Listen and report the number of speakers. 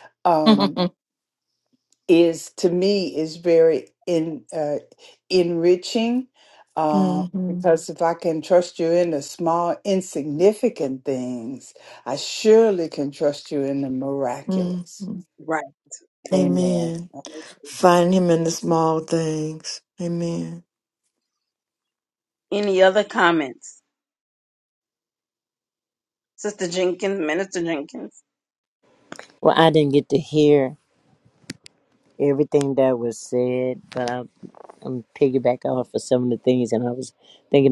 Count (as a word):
four